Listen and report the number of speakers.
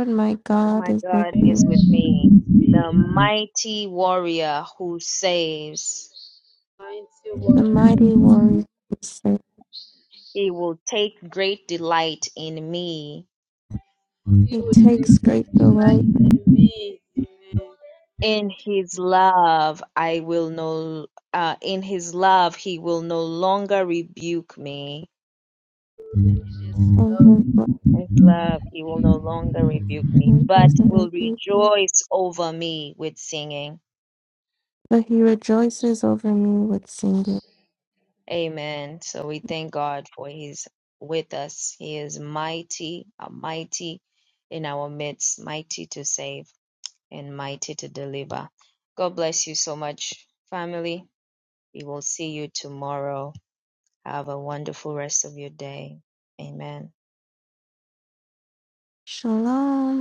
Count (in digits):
3